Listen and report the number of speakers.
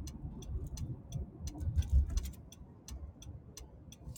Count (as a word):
zero